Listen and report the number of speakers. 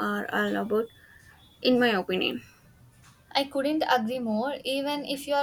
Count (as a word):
two